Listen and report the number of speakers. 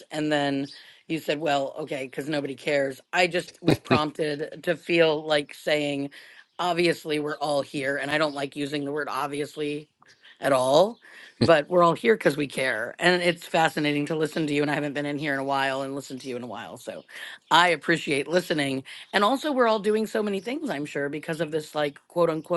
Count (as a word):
one